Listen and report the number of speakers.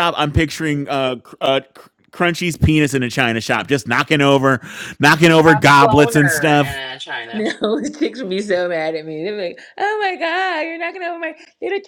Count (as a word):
three